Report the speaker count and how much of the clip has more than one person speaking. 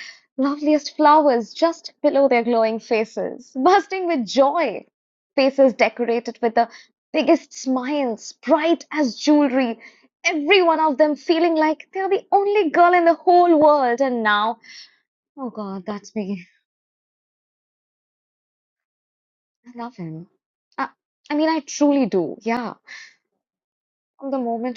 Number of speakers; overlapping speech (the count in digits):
1, no overlap